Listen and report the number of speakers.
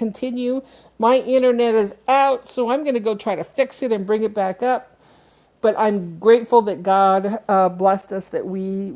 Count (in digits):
1